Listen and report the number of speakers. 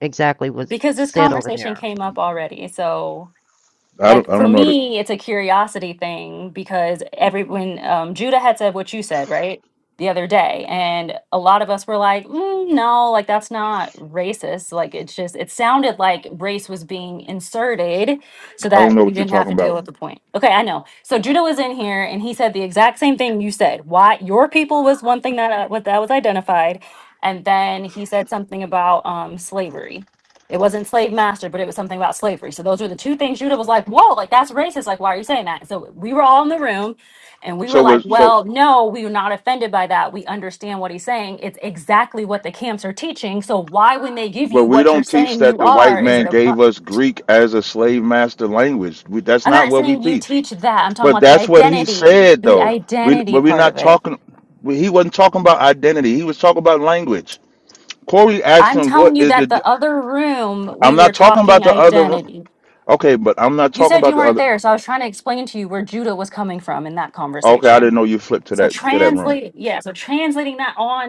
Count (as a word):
three